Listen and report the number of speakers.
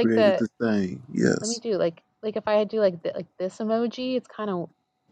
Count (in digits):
2